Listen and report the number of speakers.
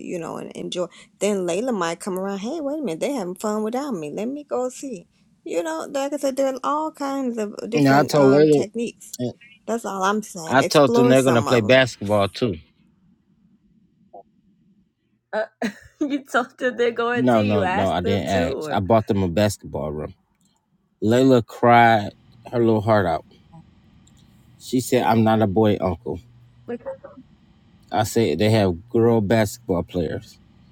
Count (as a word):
three